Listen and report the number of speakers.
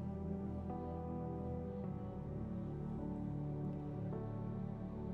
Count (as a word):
zero